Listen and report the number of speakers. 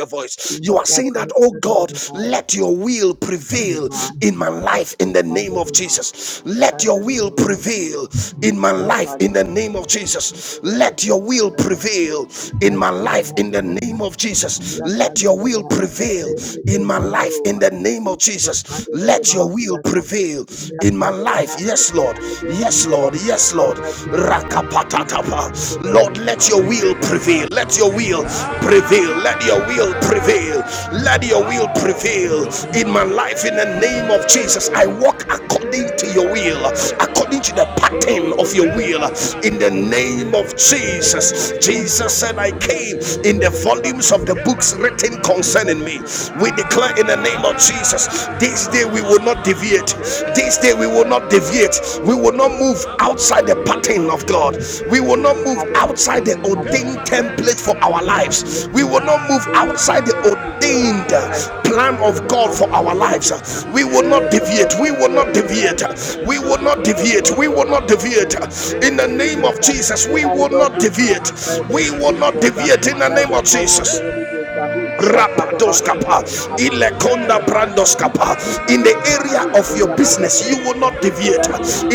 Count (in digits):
2